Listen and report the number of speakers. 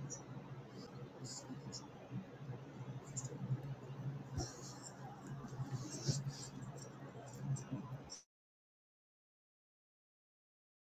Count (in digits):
0